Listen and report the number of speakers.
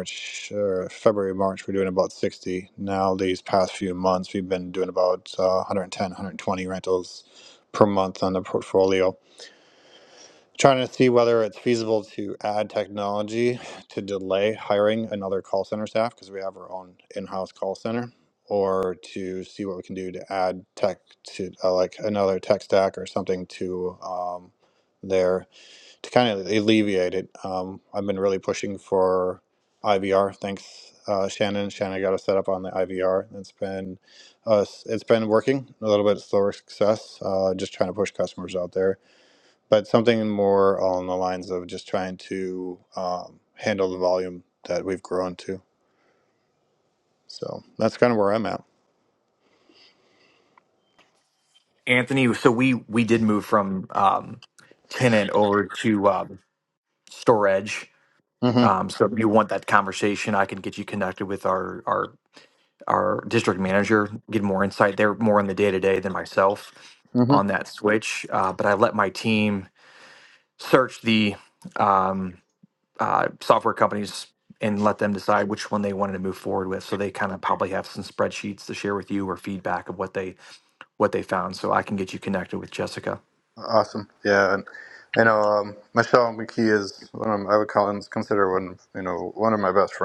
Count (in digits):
2